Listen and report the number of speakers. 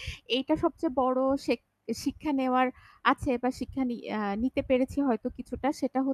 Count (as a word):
one